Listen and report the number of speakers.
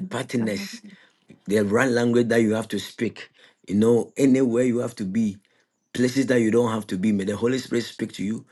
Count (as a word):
one